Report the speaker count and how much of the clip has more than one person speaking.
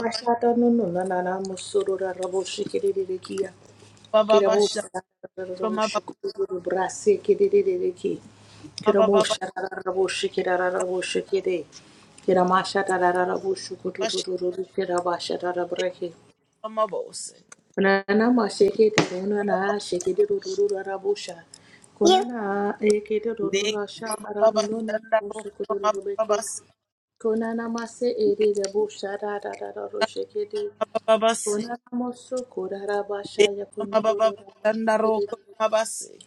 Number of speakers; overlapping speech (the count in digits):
2, about 13%